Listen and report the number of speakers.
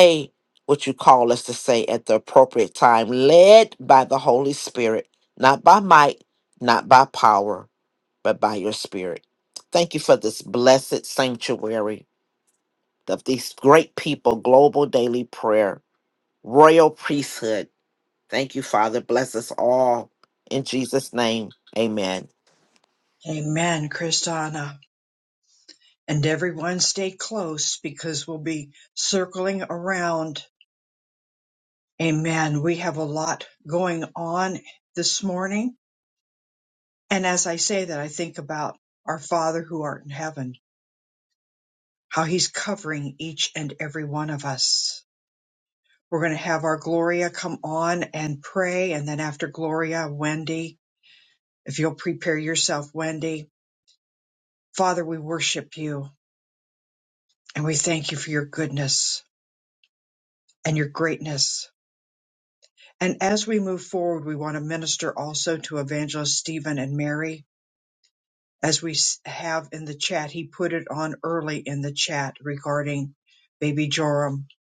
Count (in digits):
2